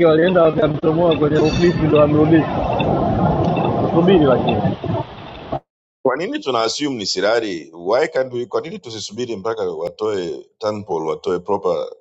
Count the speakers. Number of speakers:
2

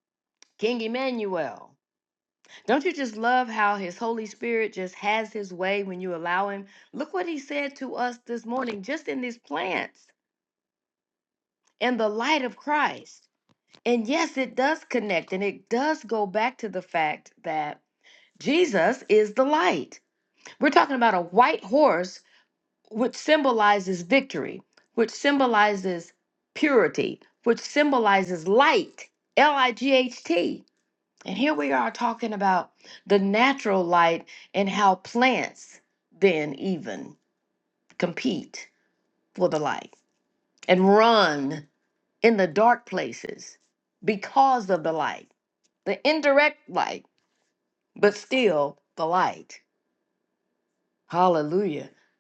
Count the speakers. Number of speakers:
1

